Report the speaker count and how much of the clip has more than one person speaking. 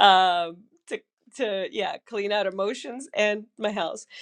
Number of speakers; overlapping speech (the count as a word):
one, no overlap